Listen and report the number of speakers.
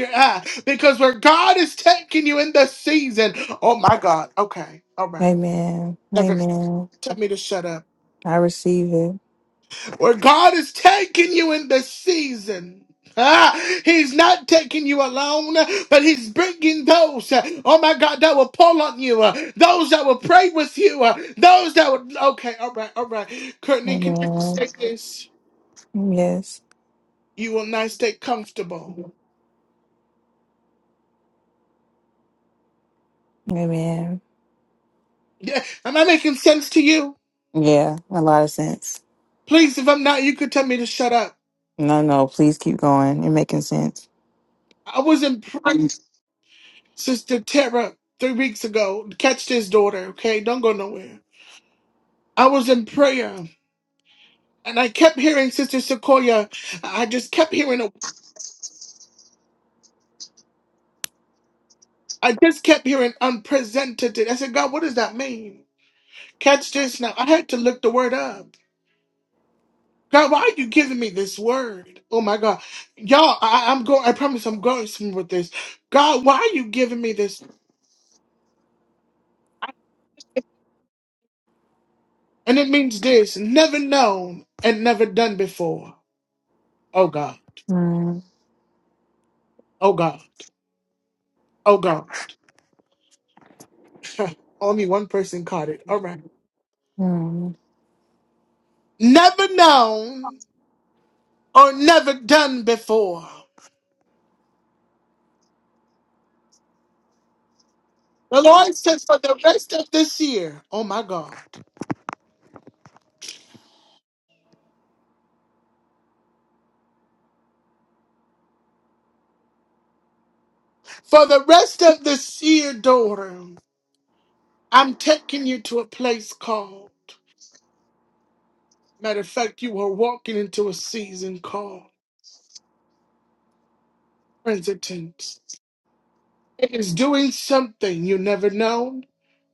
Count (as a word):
two